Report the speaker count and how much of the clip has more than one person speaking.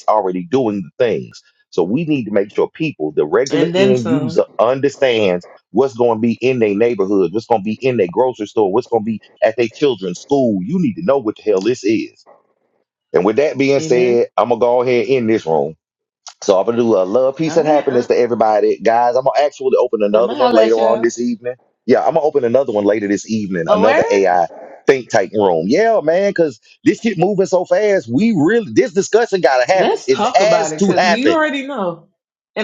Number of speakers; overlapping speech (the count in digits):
2, about 15%